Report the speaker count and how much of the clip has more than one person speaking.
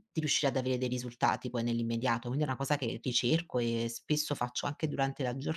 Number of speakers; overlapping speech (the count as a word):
one, no overlap